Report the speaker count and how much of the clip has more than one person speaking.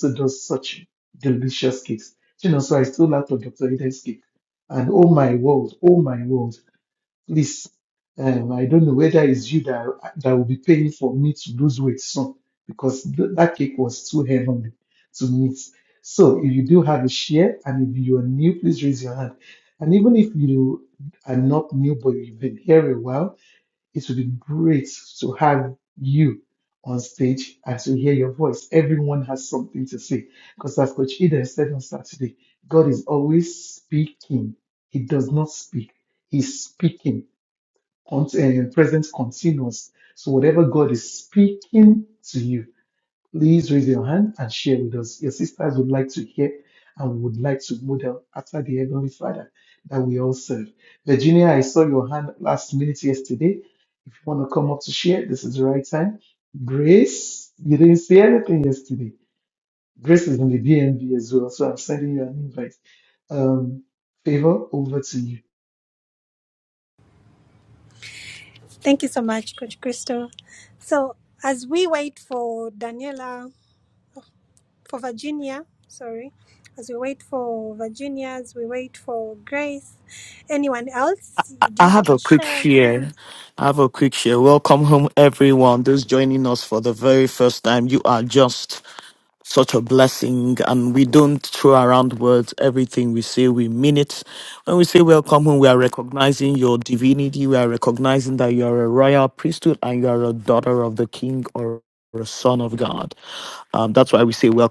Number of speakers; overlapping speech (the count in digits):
3, about 1%